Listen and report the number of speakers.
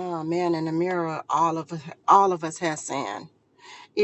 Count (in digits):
1